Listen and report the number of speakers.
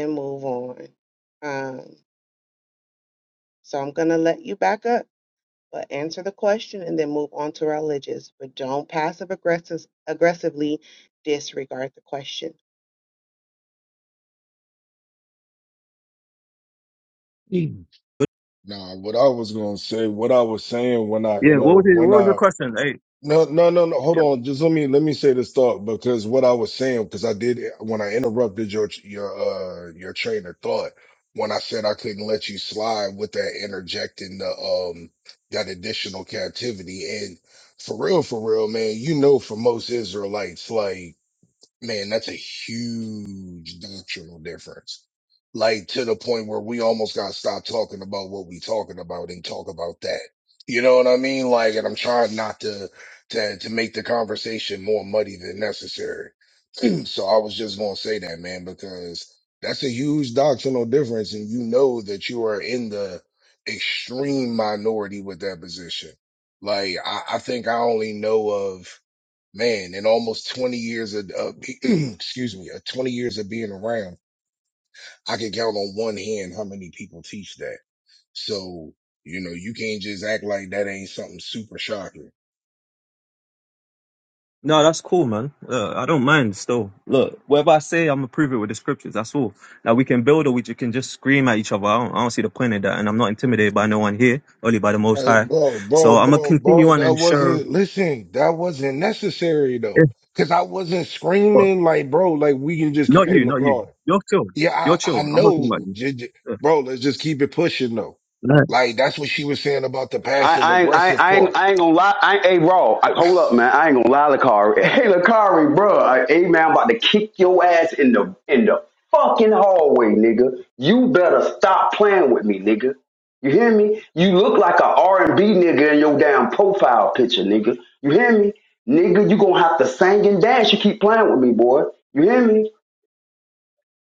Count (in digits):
4